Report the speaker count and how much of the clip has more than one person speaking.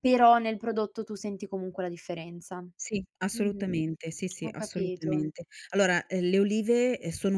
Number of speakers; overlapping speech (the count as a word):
two, about 16%